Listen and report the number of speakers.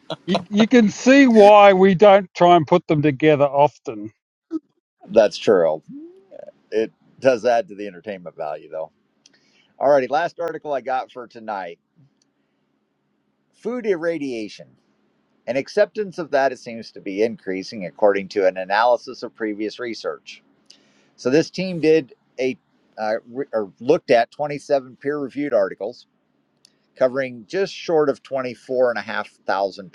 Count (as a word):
two